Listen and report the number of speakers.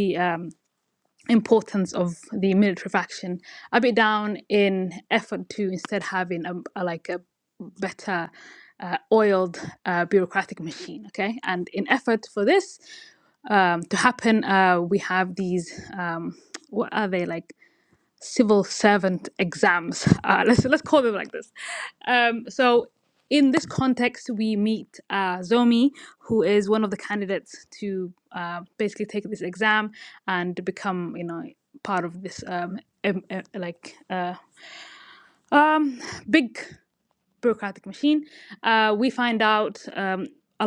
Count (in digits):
1